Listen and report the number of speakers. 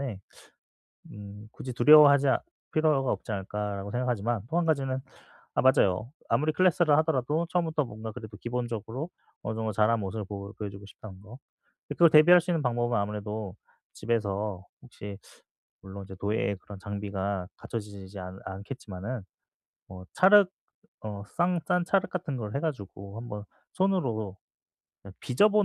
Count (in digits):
1